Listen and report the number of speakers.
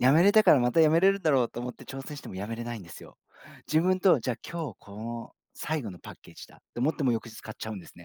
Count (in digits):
1